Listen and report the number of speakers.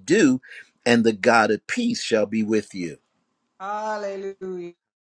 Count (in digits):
2